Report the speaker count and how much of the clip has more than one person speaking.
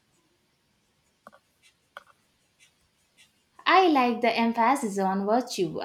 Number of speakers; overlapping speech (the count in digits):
1, no overlap